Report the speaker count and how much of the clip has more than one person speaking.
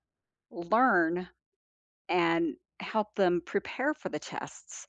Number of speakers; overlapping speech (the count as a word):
one, no overlap